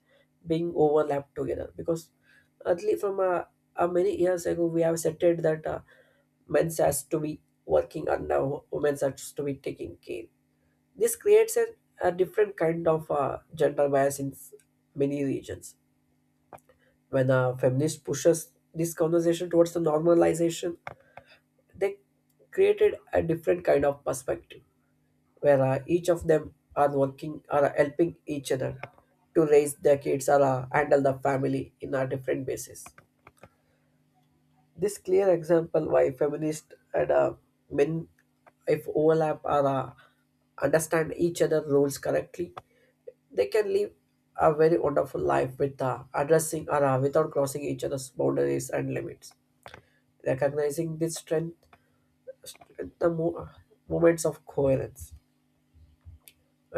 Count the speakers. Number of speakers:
1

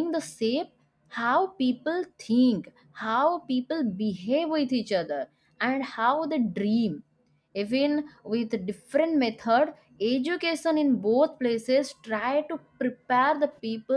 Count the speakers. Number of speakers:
1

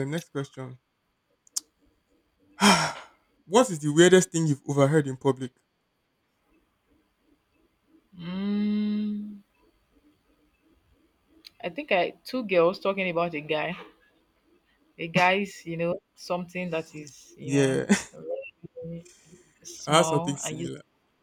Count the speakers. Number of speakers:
2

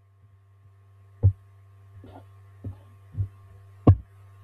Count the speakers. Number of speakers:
0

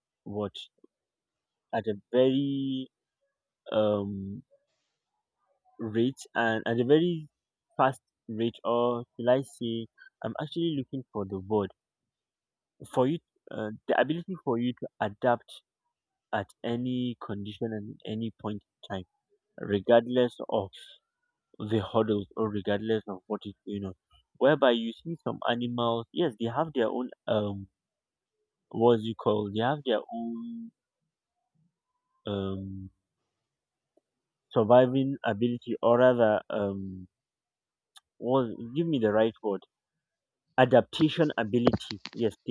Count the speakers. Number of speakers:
1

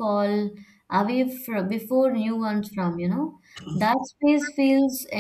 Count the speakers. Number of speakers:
1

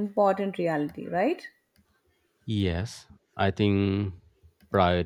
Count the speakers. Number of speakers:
2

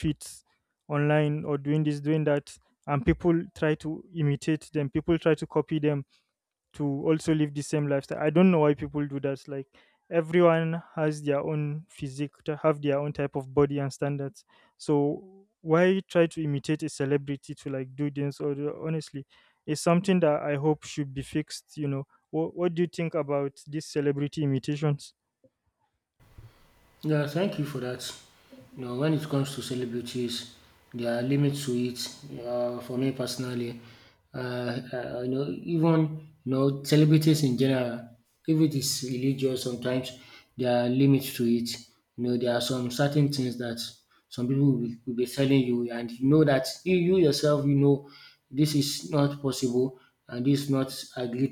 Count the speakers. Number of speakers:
2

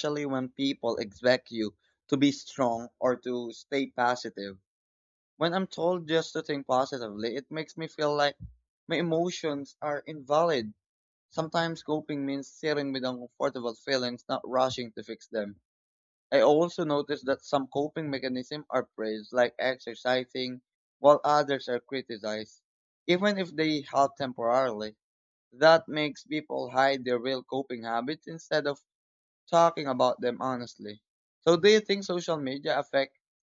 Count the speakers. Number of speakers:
1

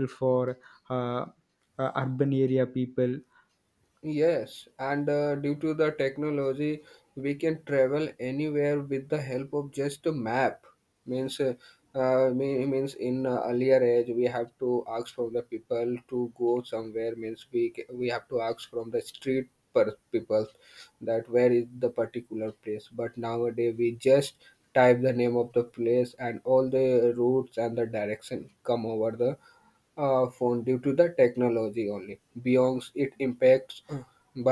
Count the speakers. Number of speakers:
2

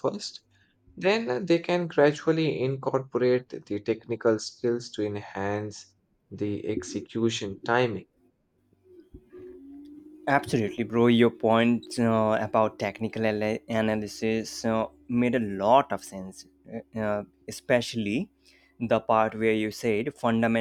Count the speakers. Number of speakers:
2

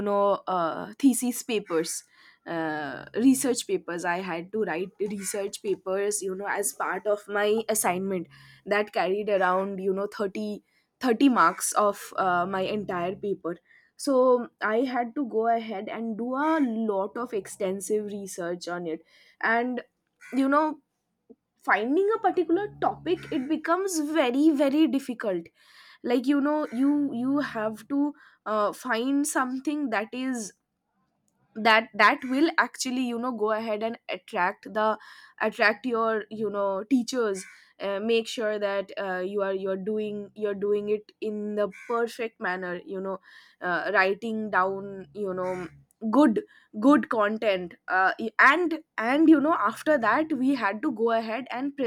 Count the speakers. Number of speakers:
1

